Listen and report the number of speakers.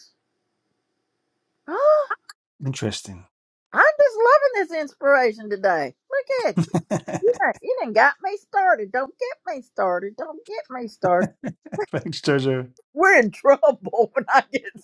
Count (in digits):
2